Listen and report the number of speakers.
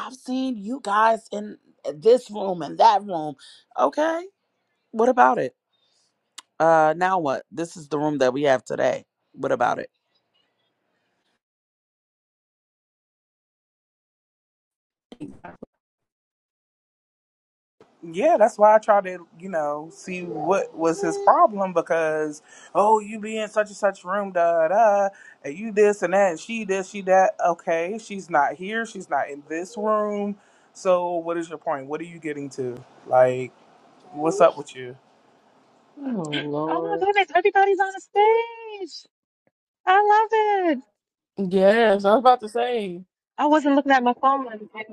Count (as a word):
five